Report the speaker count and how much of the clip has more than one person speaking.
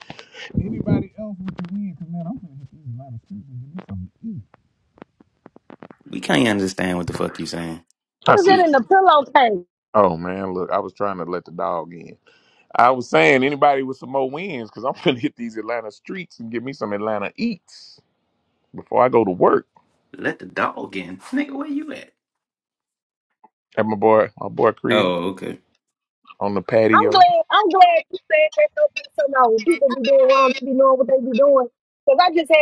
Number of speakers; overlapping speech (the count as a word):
three, about 3%